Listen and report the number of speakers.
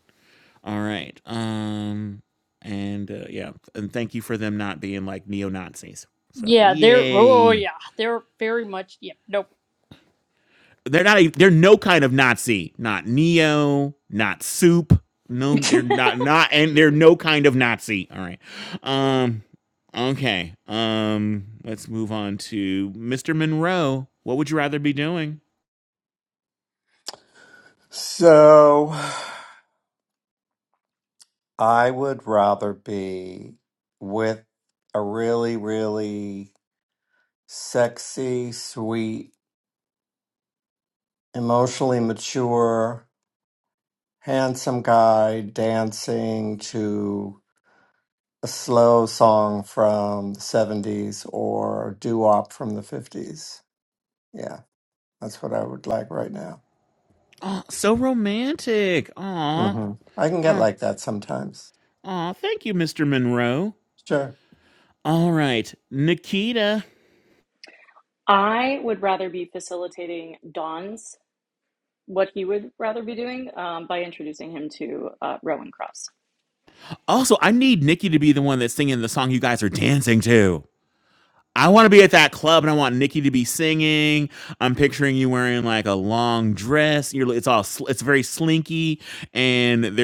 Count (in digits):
4